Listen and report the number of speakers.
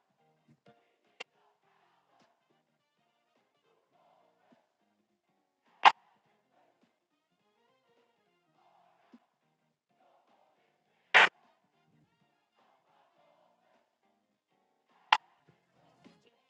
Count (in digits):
0